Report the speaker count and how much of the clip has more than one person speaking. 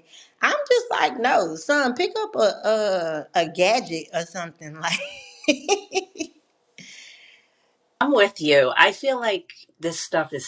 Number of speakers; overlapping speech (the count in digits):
2, no overlap